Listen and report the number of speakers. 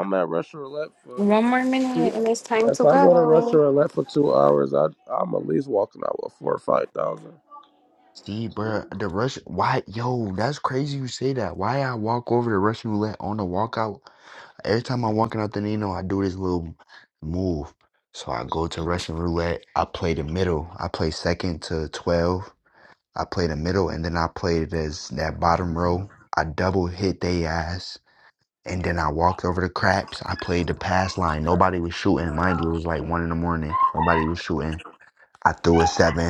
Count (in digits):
3